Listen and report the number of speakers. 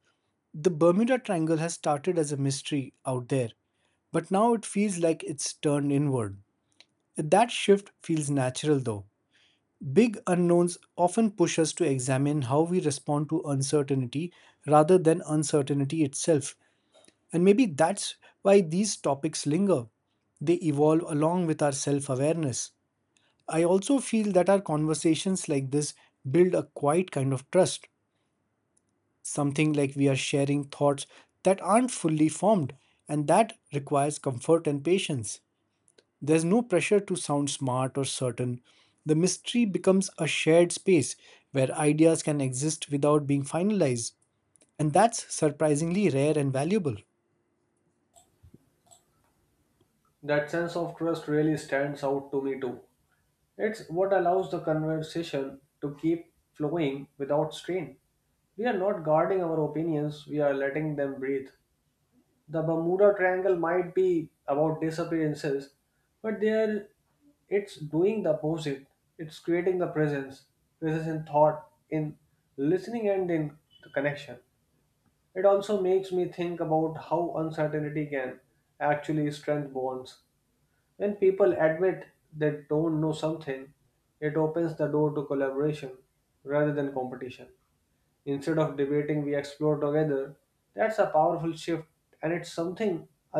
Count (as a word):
two